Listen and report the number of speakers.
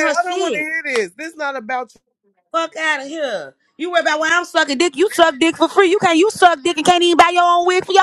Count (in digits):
2